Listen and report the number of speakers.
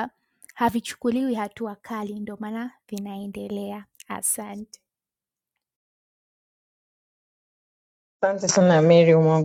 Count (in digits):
2